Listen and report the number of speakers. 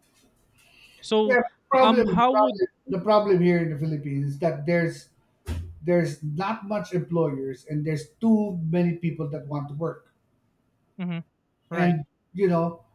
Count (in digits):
2